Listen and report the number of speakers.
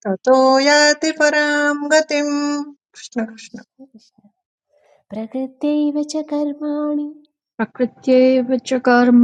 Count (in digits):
3